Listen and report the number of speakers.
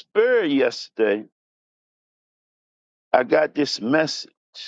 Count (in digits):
1